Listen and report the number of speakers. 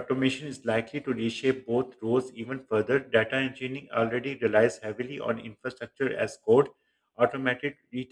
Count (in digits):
1